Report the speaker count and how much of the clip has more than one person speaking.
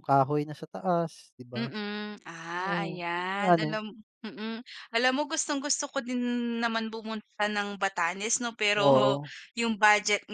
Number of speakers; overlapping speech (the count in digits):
2, about 16%